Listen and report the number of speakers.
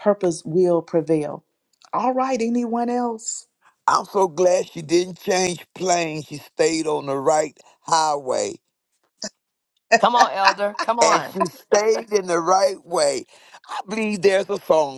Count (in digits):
3